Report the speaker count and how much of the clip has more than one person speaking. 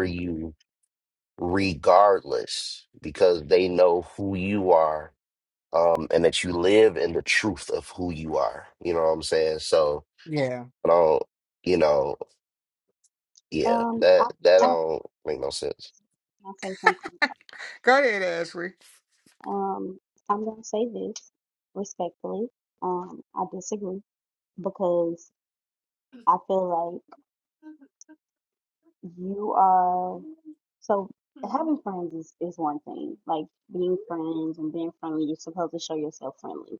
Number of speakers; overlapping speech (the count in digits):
3, about 3%